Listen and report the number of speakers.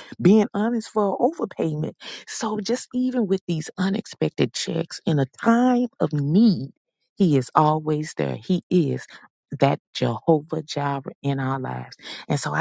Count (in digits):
1